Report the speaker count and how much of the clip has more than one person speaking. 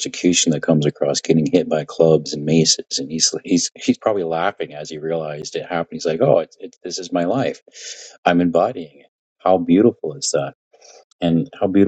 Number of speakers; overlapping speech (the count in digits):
1, no overlap